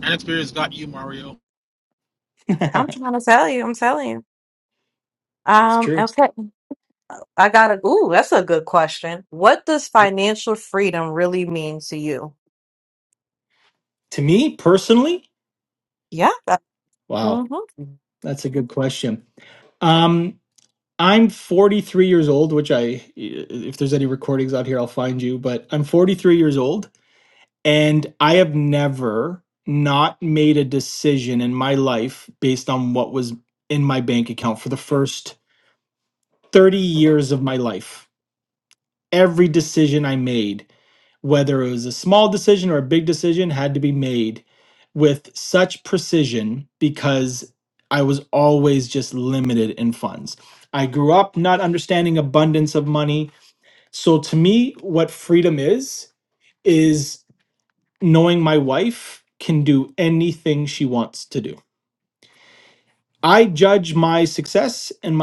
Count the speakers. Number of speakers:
three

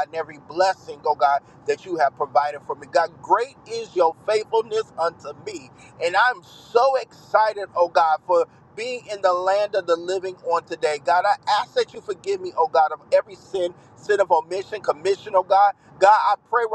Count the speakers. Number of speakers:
one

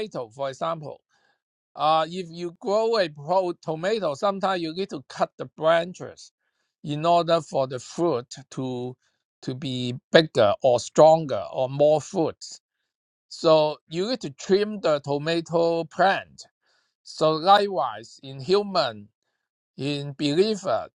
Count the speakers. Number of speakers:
one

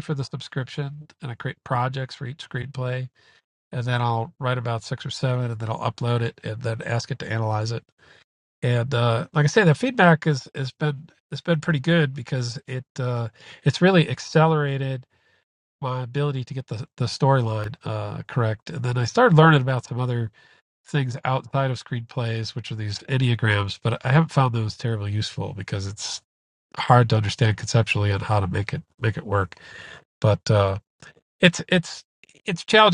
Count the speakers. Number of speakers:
one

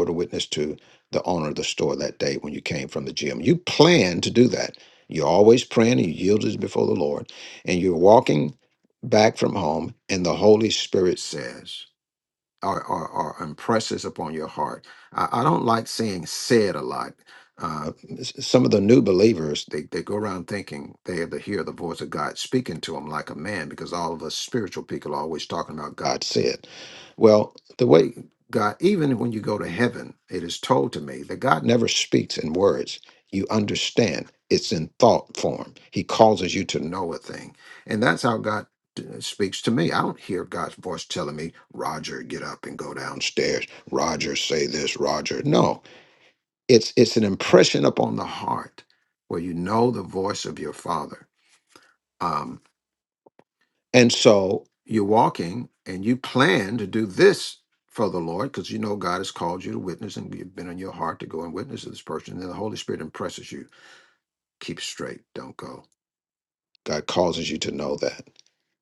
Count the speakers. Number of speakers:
one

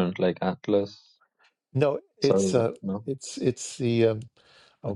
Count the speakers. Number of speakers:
two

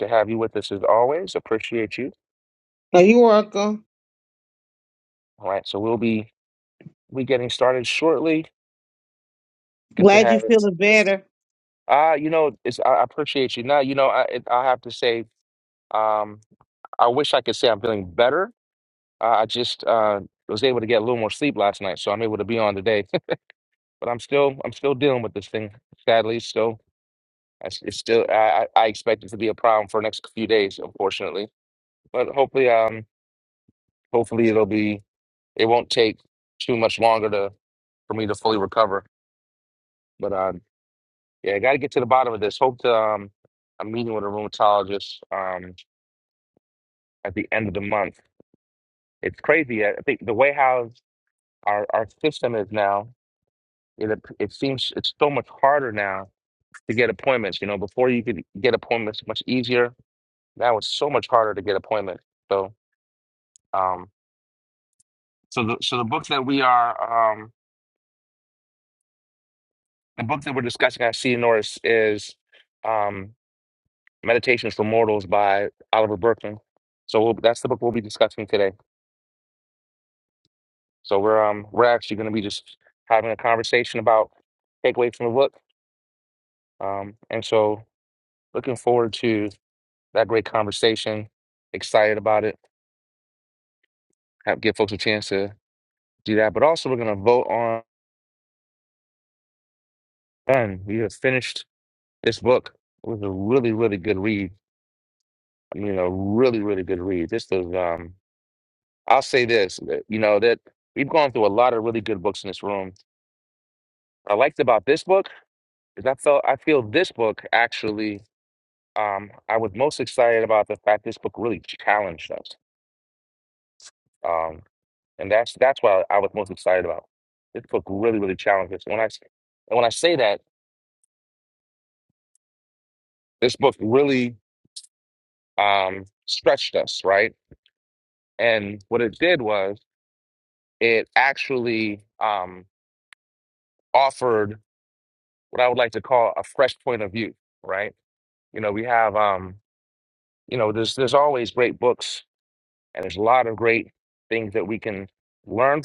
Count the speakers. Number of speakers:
two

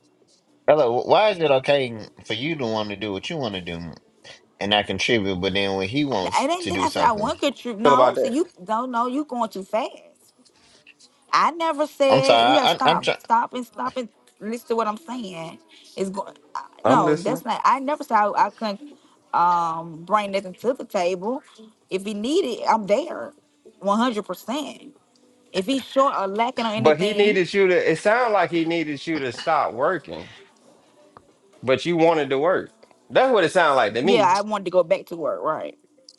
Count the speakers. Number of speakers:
three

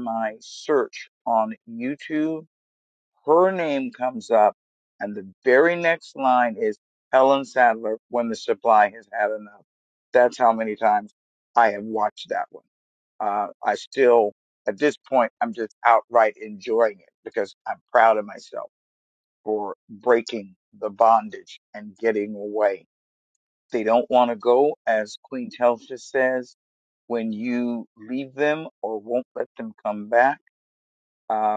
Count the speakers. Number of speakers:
one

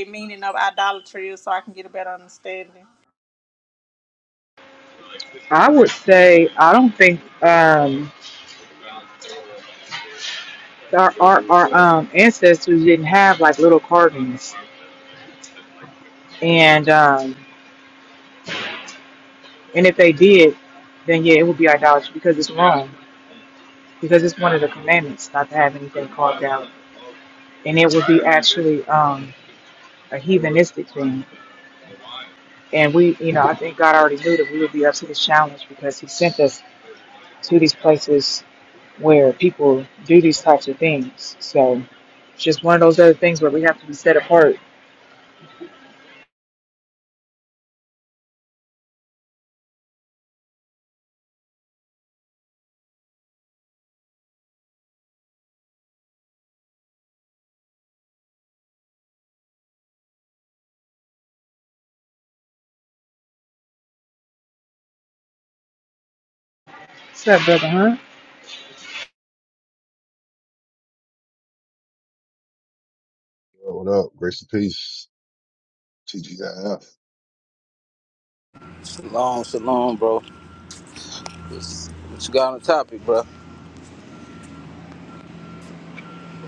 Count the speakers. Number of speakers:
four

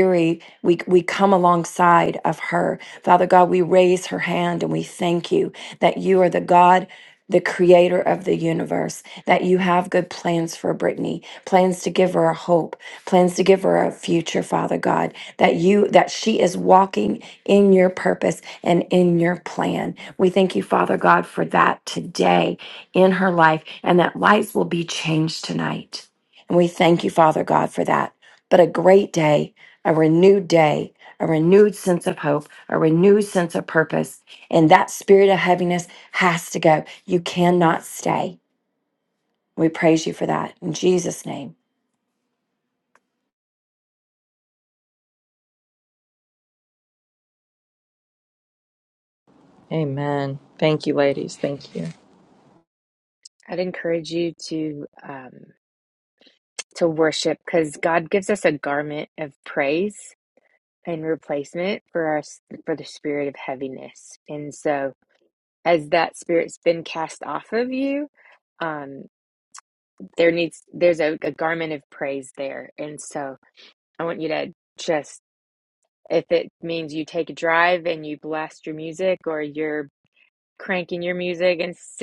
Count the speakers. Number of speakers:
three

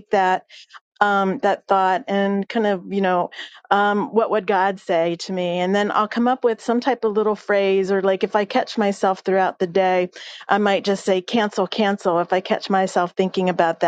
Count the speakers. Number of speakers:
one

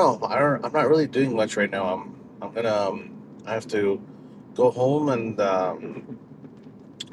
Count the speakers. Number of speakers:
one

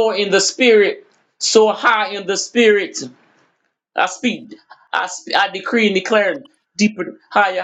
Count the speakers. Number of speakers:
one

